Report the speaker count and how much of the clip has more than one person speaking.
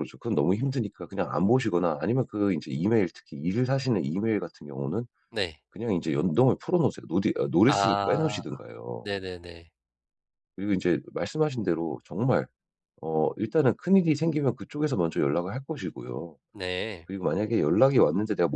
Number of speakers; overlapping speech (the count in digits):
2, about 4%